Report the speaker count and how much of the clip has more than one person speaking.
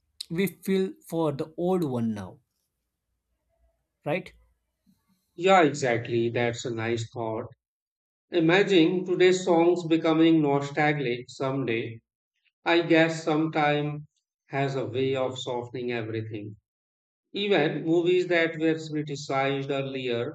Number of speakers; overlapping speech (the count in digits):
2, no overlap